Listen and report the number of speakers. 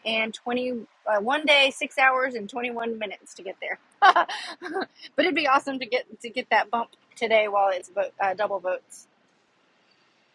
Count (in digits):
1